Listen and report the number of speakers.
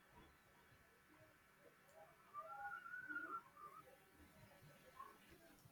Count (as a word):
zero